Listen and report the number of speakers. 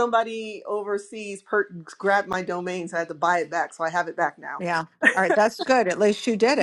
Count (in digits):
2